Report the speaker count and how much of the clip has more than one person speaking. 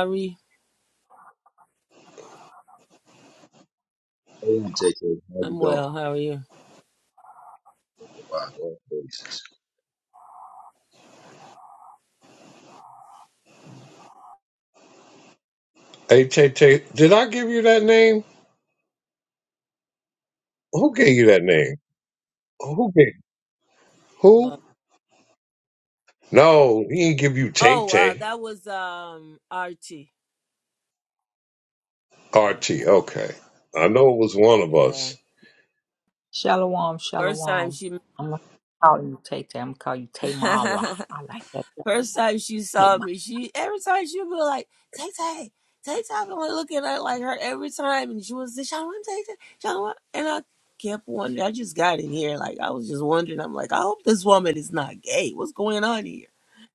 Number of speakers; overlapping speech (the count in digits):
4, about 4%